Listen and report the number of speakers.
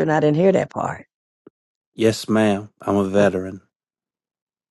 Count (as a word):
two